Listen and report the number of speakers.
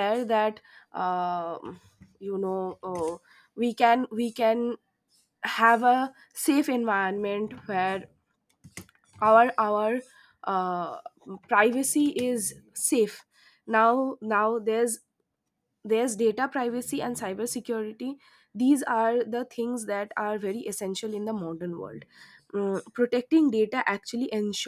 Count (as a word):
one